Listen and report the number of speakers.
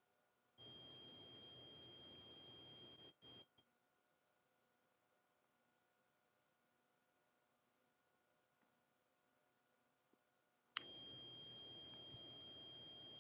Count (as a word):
zero